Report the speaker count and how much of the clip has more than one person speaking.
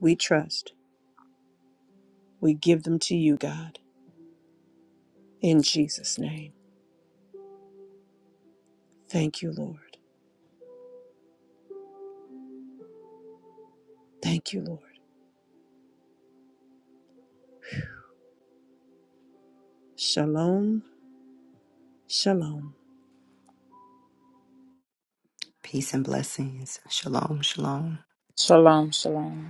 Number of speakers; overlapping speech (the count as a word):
three, no overlap